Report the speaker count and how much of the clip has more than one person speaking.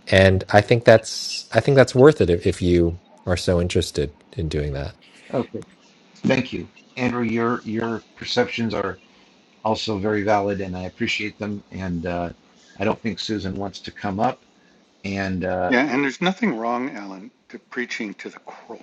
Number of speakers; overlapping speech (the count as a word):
three, under 1%